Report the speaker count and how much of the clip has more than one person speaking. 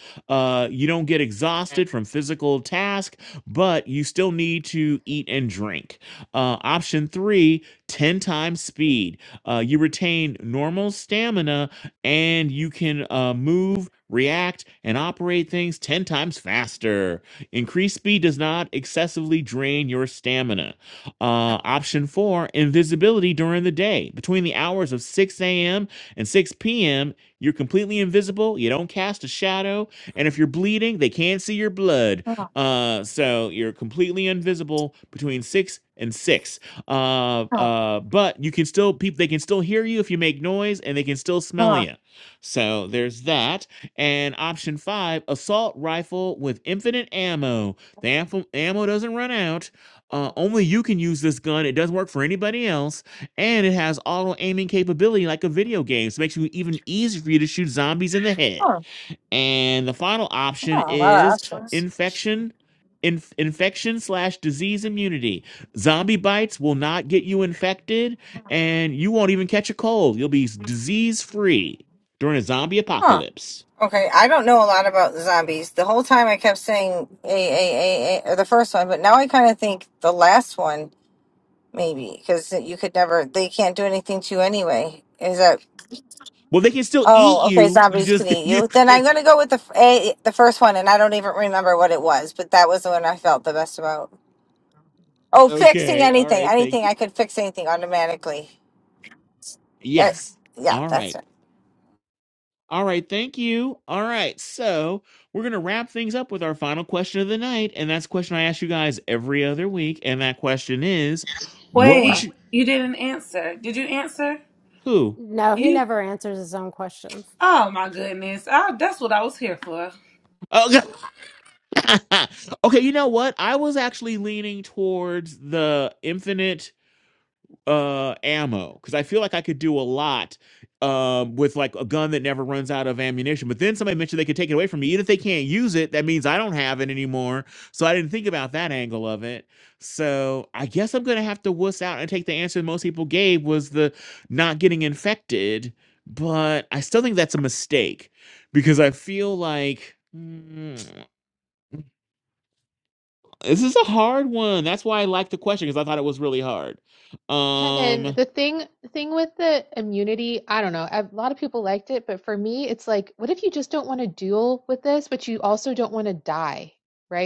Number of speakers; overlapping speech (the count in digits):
5, about 4%